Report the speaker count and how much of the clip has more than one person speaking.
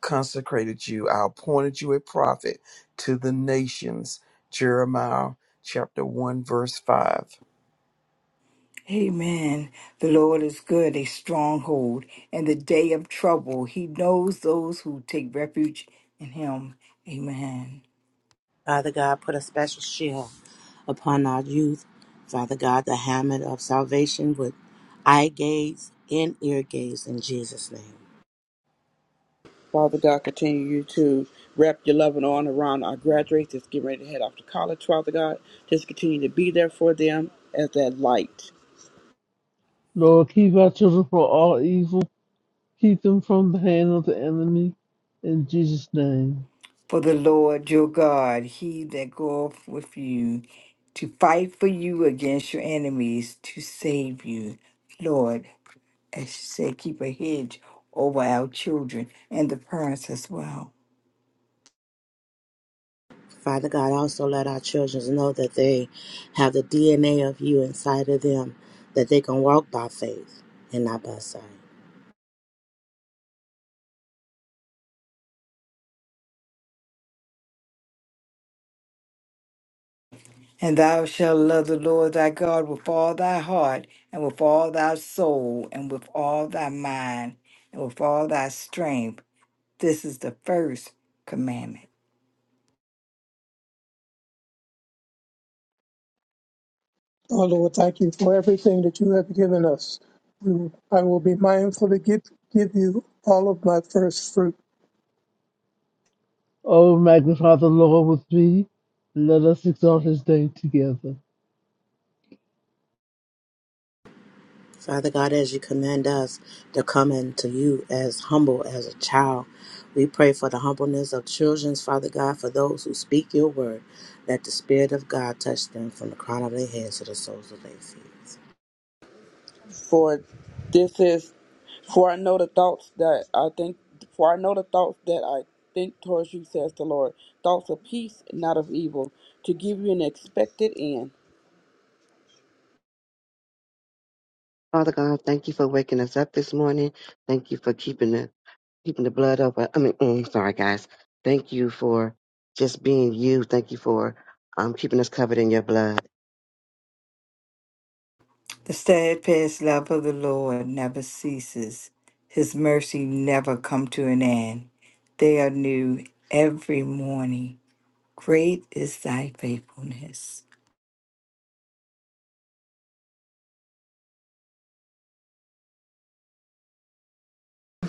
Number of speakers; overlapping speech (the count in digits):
7, no overlap